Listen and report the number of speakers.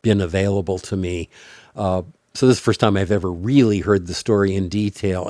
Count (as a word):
one